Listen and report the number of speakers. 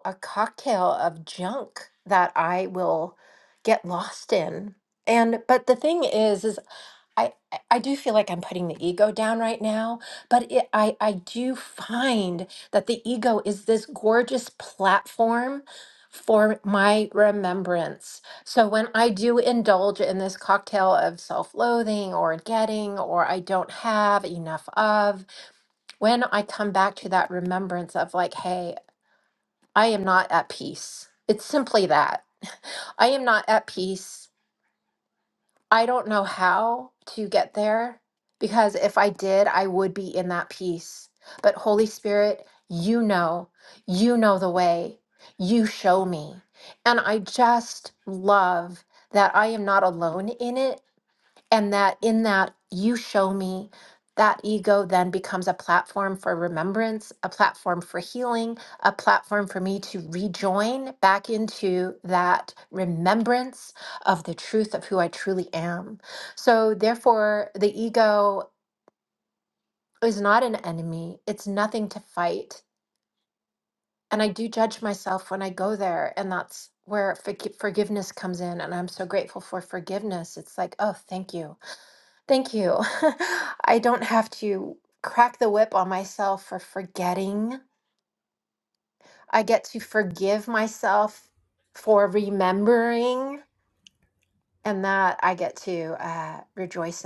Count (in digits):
1